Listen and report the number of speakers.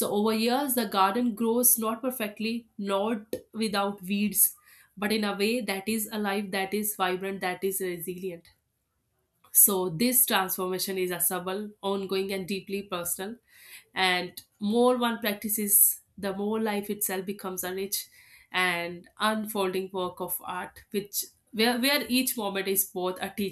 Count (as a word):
one